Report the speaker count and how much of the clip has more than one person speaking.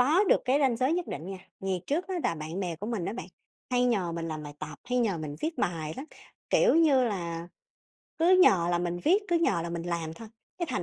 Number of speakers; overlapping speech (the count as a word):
one, no overlap